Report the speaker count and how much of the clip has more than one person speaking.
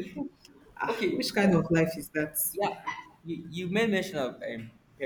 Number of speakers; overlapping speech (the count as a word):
two, about 16%